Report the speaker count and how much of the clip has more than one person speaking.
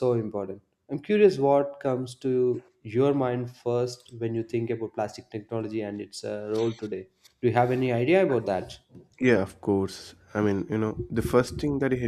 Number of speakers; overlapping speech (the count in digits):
2, no overlap